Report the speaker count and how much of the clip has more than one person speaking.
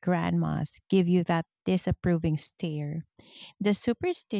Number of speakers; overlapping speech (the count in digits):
1, no overlap